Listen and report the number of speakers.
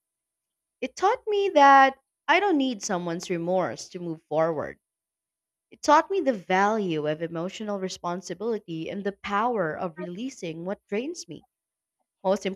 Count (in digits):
1